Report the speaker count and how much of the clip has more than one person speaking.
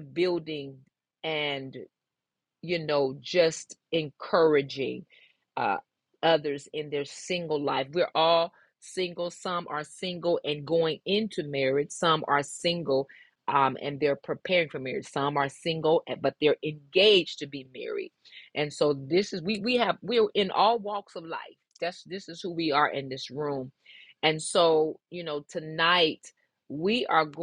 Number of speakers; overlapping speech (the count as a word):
one, no overlap